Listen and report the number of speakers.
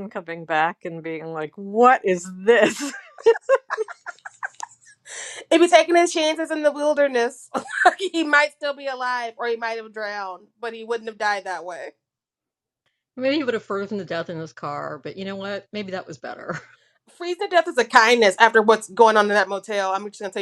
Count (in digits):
3